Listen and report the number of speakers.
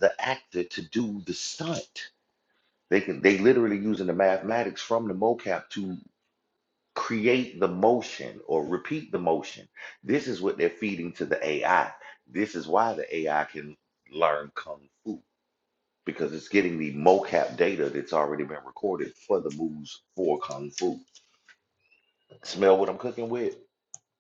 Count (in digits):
1